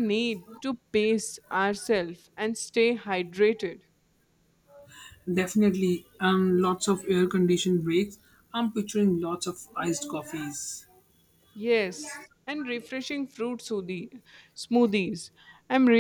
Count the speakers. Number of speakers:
two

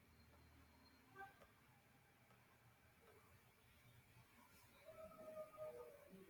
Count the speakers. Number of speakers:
zero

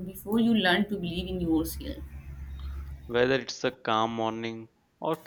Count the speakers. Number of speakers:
two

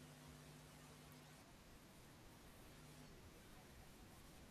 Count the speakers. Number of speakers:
zero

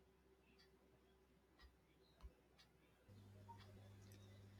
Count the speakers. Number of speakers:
zero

